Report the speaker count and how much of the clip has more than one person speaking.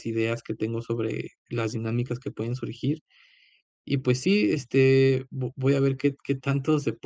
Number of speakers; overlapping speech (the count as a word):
one, no overlap